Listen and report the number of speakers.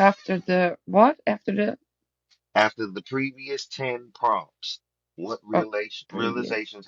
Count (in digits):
2